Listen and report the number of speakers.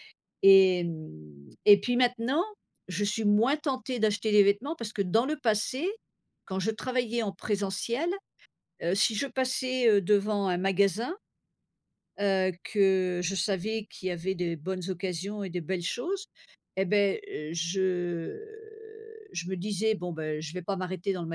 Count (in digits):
1